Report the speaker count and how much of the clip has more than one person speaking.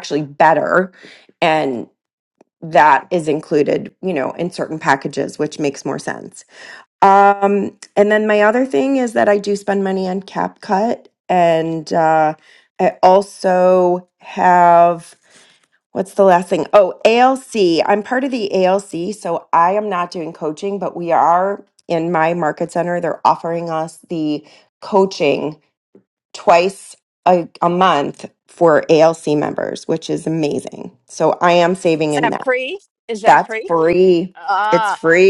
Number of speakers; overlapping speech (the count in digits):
2, about 3%